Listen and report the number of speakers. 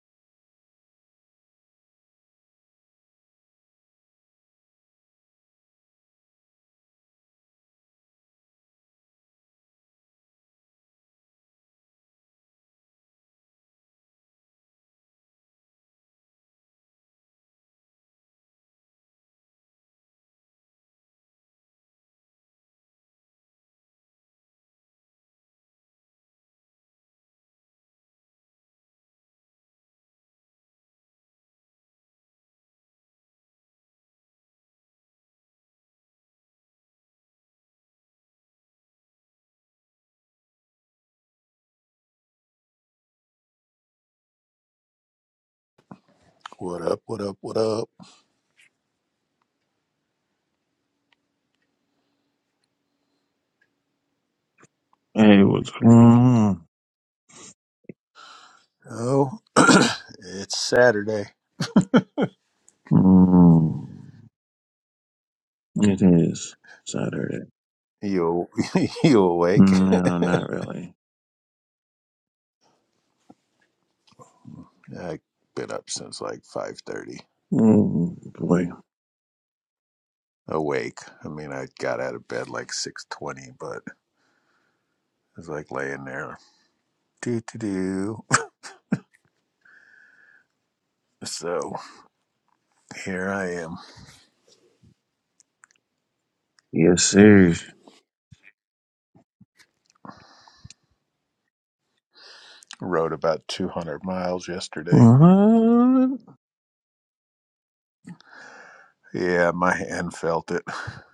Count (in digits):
2